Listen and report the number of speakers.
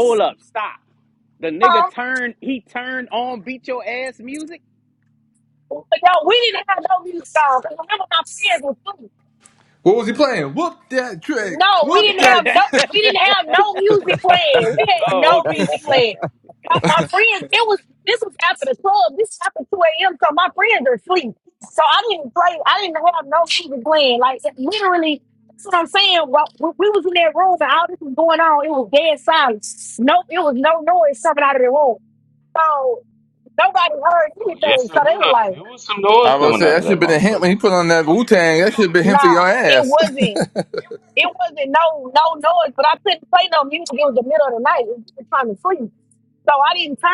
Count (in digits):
4